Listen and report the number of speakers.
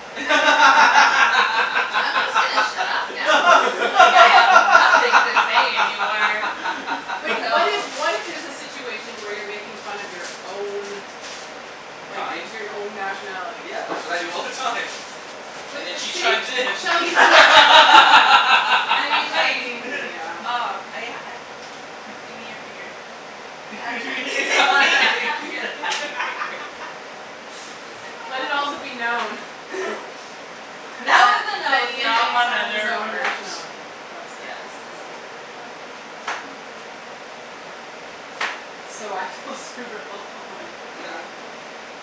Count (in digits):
3